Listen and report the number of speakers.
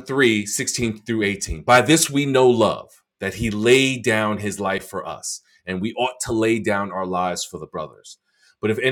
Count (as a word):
one